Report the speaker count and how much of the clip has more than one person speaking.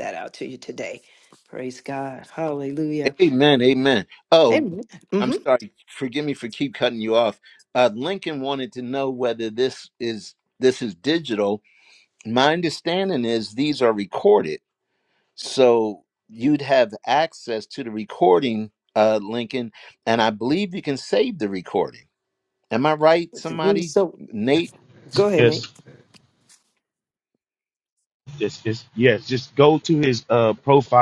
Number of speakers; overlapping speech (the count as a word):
three, about 3%